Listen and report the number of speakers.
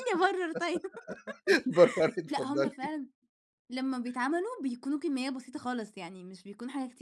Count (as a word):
two